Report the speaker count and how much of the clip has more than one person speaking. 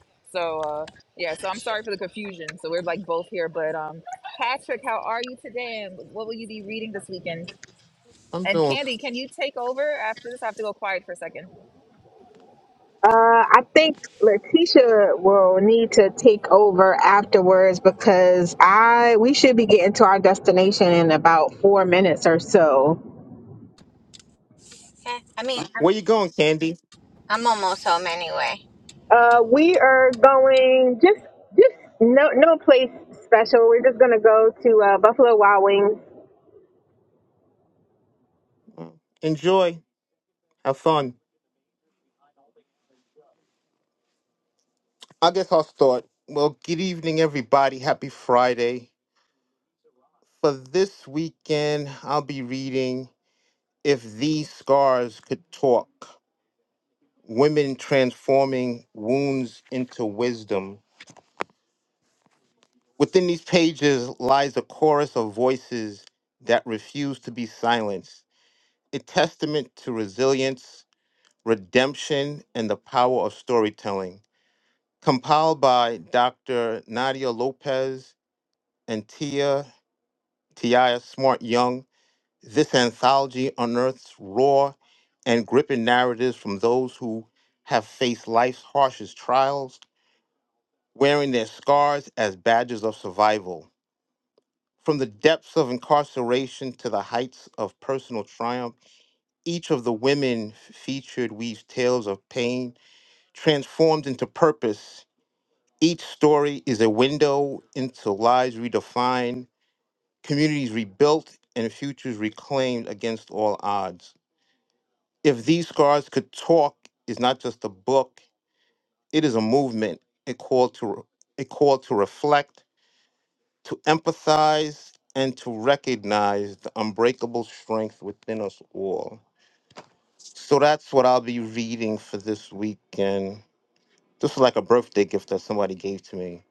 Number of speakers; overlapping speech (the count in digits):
4, under 1%